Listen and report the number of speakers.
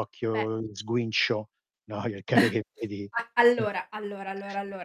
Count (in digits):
2